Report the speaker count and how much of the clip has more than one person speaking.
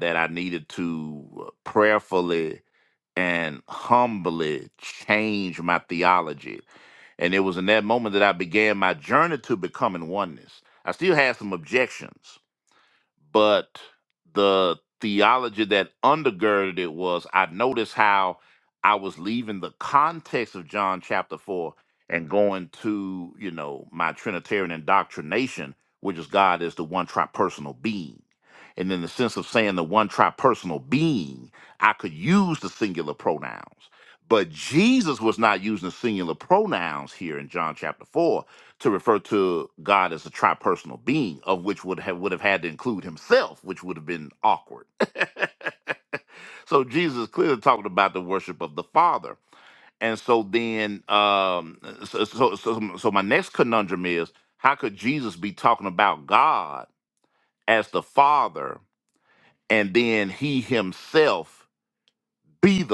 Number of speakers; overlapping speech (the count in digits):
1, no overlap